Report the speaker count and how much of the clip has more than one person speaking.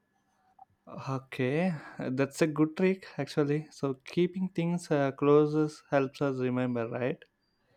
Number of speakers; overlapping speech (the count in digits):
1, no overlap